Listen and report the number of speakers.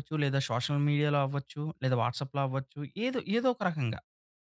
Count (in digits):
1